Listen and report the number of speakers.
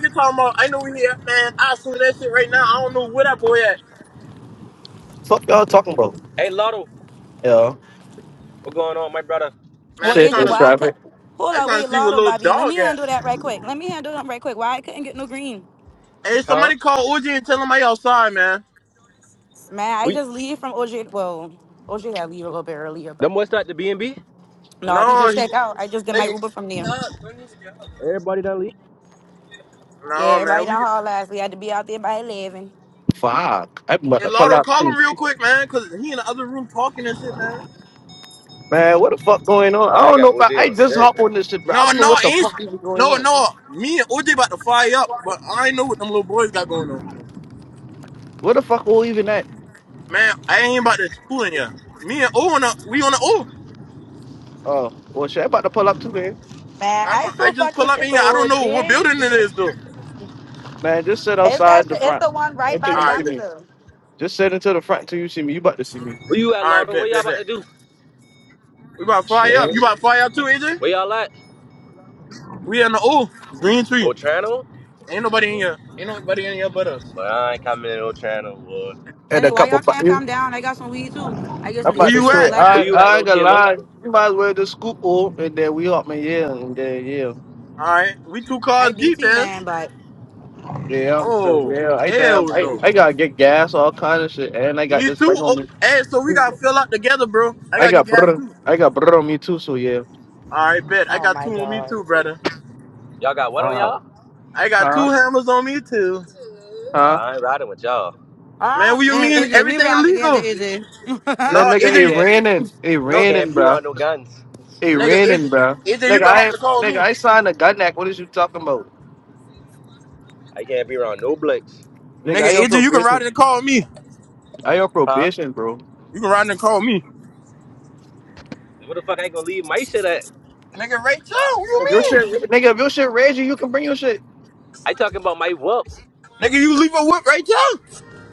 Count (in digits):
4